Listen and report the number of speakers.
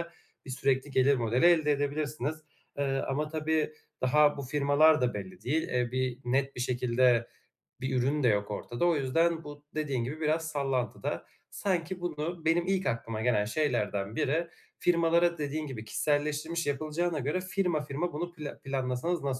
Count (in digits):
1